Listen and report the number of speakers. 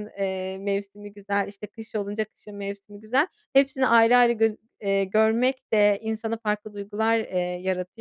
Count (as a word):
one